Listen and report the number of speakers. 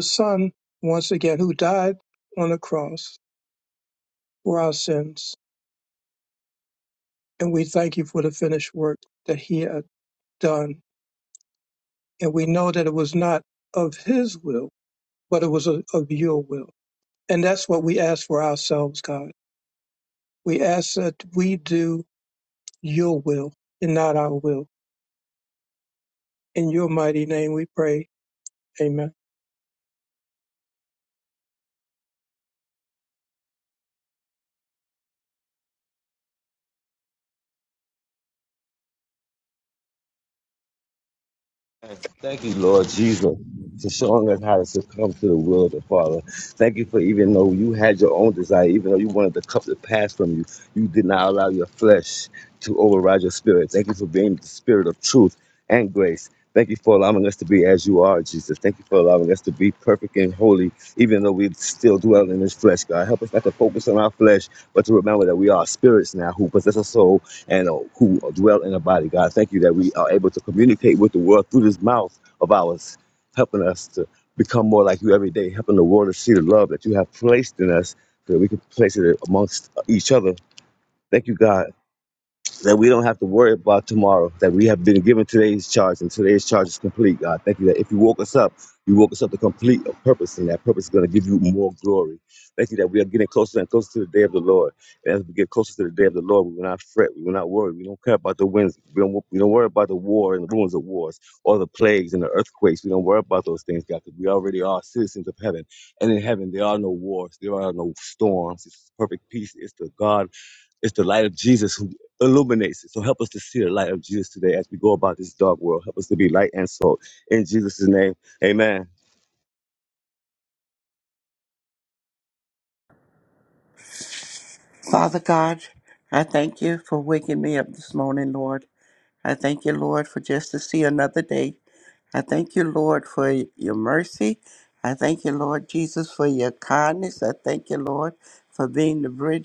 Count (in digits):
3